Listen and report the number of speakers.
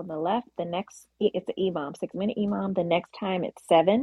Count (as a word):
one